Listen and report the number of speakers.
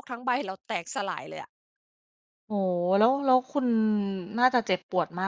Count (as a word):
two